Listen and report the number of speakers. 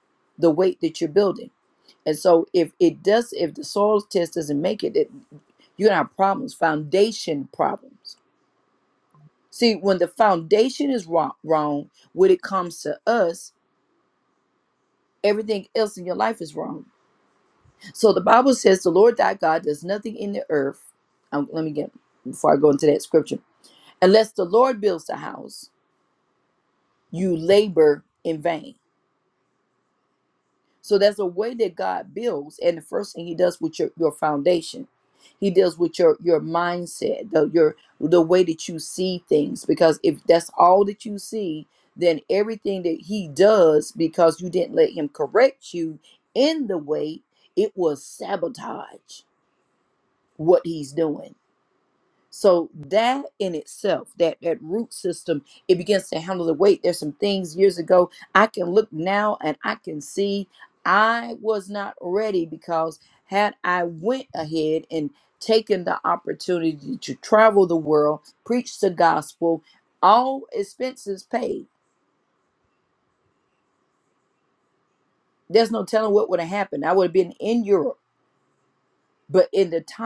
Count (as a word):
one